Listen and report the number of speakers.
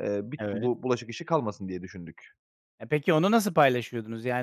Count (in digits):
2